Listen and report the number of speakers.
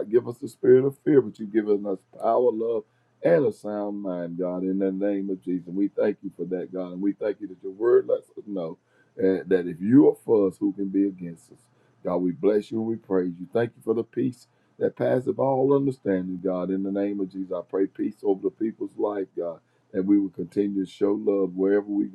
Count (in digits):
1